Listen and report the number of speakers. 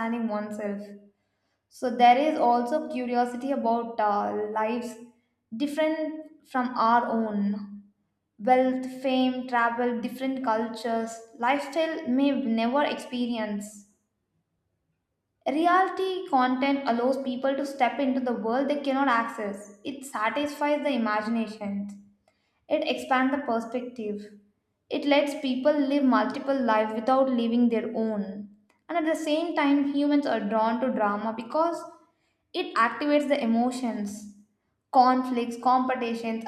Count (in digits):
1